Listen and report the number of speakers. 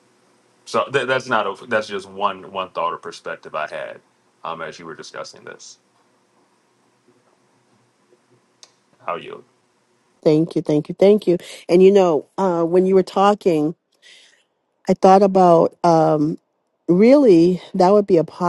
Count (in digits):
2